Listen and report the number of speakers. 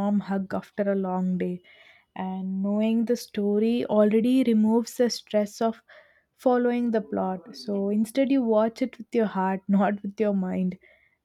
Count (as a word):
one